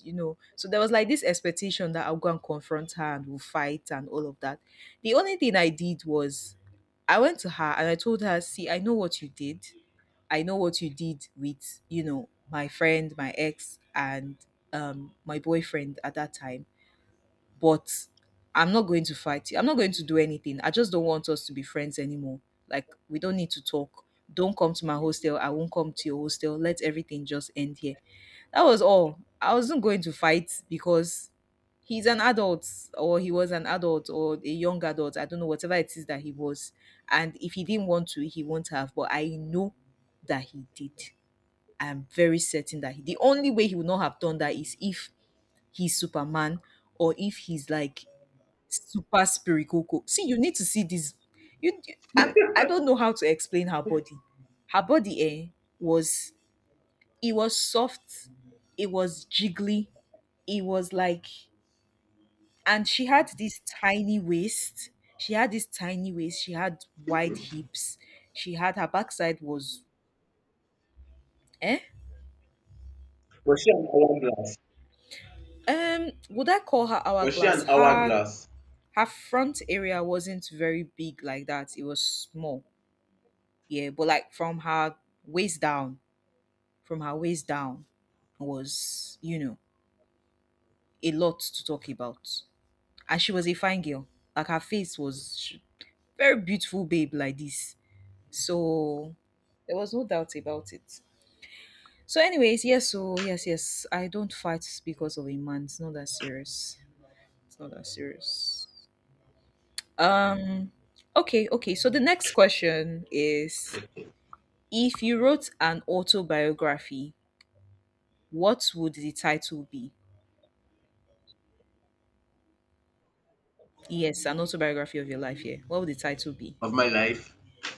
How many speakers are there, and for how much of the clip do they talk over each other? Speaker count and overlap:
2, about 1%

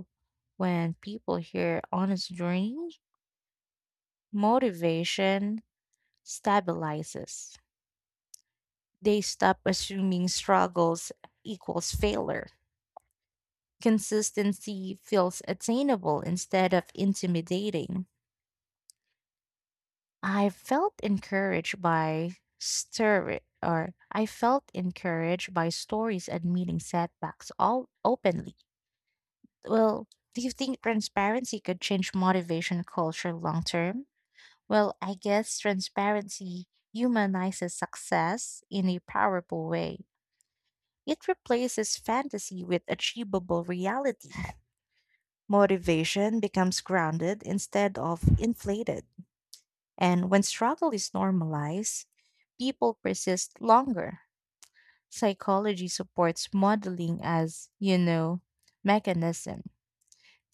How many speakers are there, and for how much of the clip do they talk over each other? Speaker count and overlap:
1, no overlap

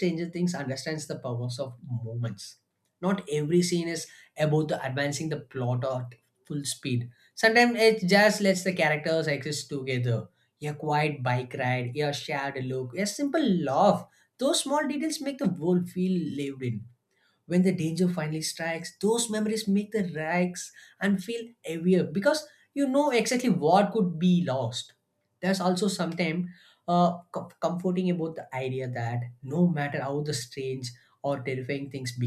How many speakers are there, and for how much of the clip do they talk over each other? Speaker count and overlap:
1, no overlap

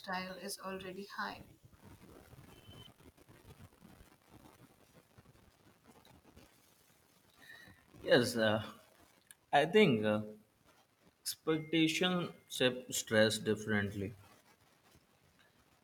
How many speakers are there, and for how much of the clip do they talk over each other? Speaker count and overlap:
2, no overlap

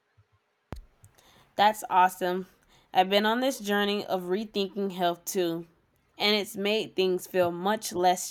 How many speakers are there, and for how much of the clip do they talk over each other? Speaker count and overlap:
1, no overlap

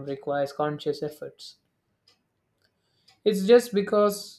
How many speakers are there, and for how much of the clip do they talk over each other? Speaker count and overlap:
1, no overlap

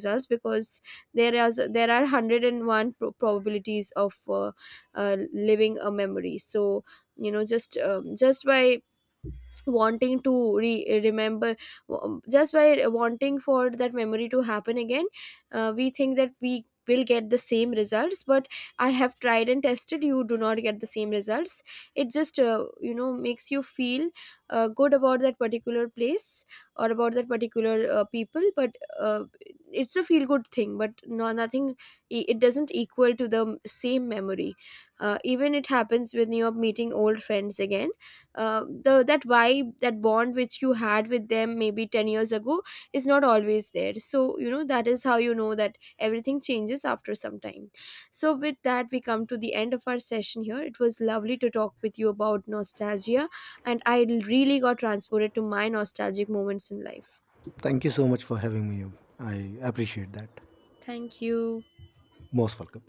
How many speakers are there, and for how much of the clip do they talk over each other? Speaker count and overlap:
2, no overlap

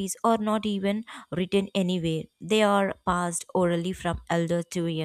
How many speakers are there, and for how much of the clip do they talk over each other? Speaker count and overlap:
1, no overlap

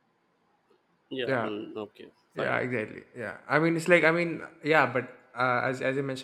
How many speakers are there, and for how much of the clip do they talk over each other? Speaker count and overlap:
2, about 8%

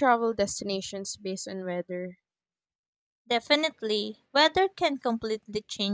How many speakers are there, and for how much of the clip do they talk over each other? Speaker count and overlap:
2, no overlap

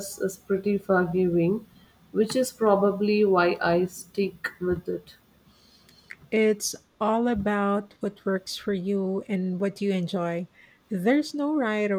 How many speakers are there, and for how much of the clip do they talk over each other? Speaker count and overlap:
2, no overlap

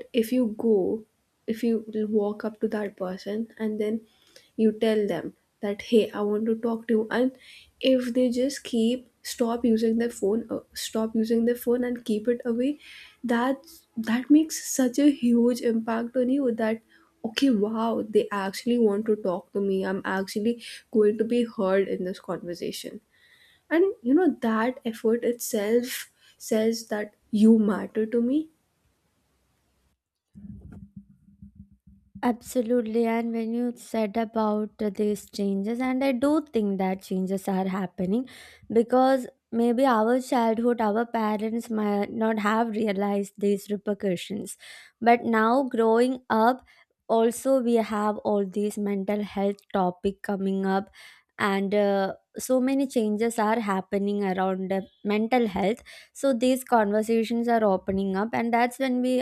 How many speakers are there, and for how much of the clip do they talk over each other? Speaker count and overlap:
2, no overlap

